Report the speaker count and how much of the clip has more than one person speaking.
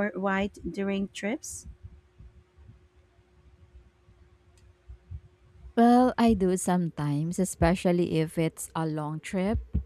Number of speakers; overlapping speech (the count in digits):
2, no overlap